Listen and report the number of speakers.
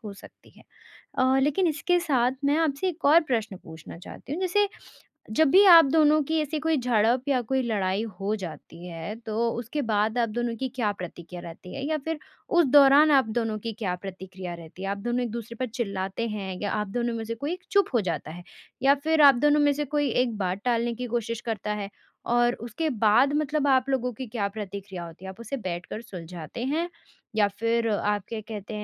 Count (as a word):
one